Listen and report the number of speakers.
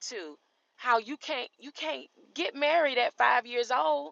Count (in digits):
1